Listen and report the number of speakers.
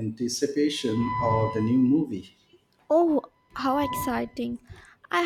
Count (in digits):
2